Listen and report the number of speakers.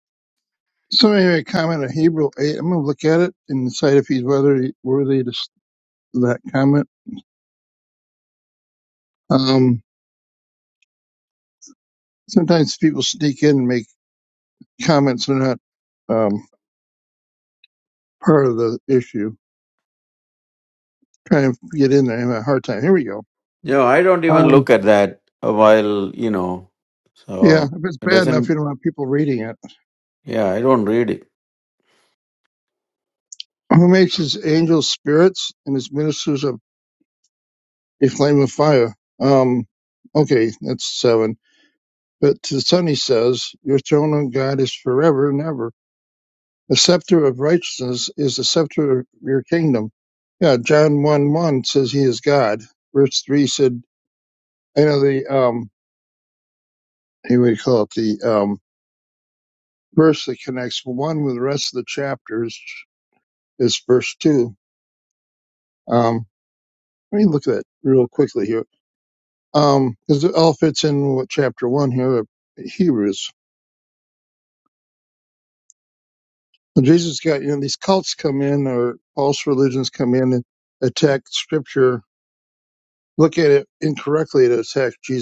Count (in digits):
2